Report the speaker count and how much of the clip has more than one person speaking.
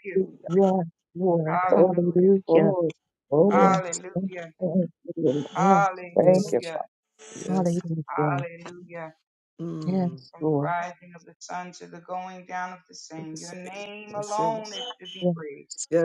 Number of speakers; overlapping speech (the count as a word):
four, about 29%